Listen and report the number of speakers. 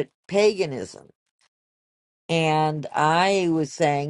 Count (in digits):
1